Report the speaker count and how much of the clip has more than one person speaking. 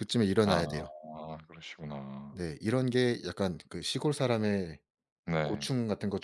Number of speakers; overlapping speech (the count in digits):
2, about 7%